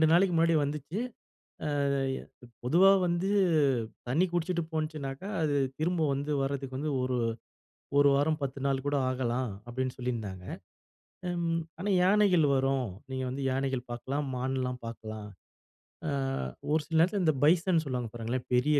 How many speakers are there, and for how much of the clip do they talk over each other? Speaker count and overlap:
one, no overlap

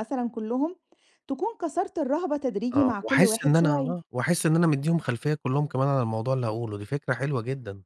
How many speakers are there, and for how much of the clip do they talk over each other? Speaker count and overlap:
two, about 16%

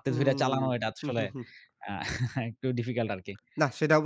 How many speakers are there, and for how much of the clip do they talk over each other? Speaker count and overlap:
two, about 16%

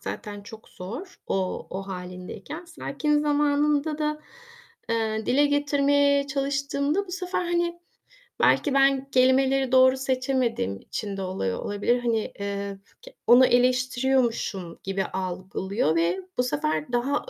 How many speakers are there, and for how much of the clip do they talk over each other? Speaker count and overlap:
one, no overlap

